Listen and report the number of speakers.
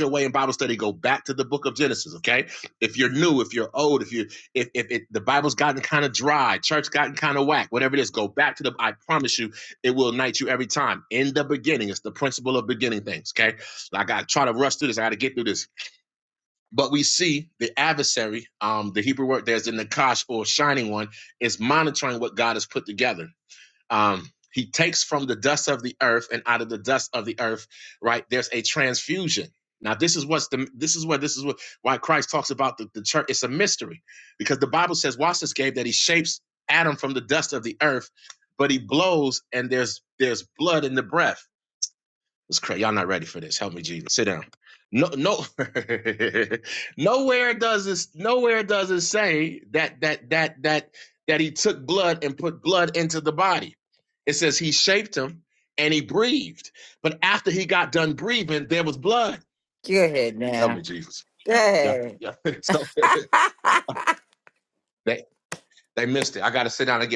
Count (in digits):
2